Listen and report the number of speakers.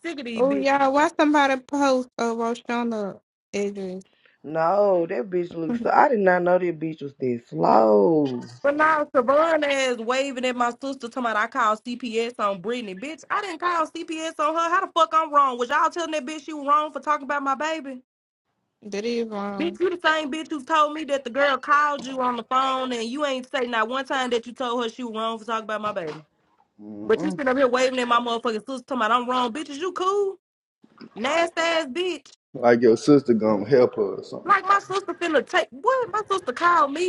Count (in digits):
4